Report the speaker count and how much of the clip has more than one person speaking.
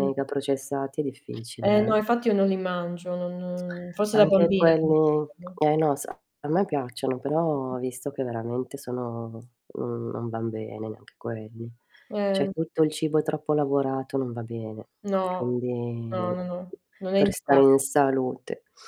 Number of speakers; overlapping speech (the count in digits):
2, about 14%